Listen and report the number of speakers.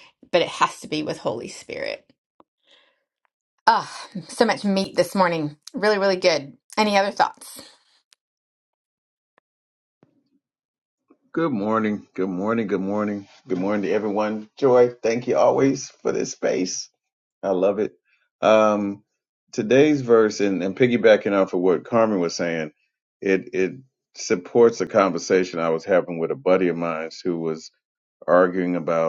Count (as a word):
two